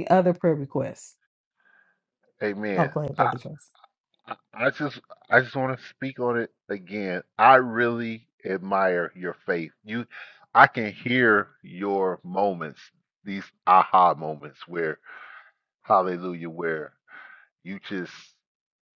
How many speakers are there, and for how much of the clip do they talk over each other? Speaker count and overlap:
two, about 3%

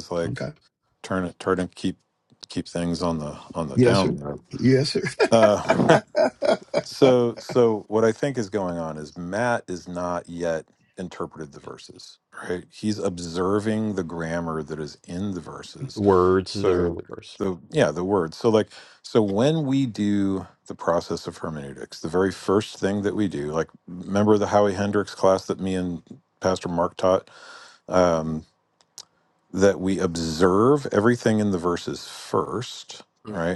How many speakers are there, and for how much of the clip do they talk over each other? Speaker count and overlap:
three, about 3%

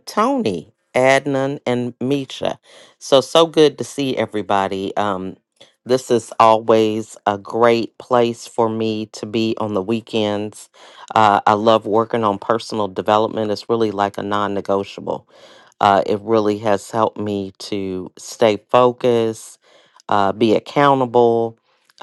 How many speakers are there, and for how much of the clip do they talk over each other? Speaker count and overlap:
one, no overlap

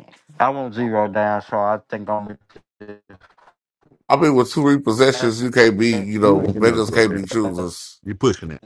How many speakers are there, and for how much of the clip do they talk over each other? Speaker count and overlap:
three, about 12%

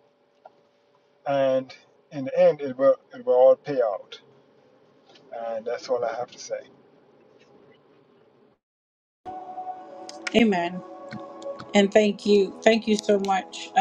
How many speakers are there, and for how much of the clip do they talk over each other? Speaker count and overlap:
two, no overlap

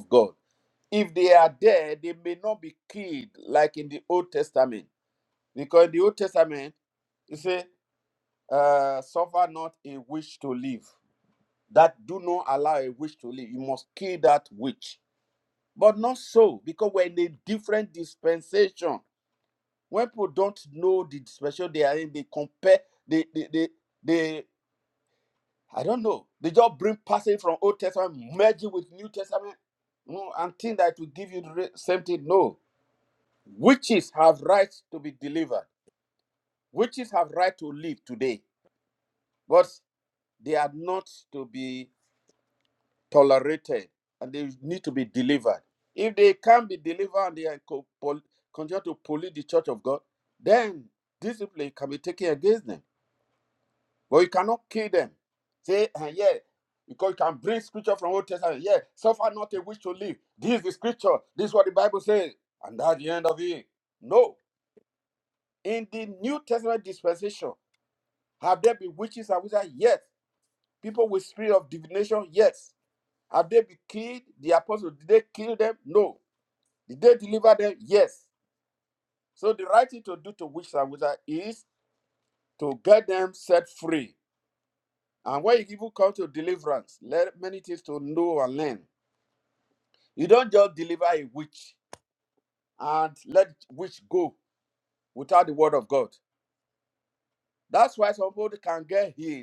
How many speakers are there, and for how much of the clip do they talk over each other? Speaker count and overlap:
one, no overlap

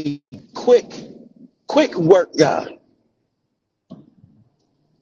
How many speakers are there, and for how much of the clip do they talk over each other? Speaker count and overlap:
one, no overlap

